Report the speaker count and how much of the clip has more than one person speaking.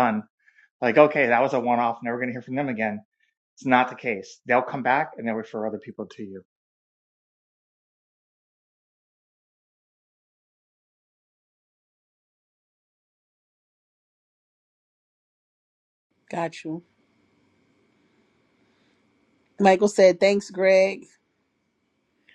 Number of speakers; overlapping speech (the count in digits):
2, no overlap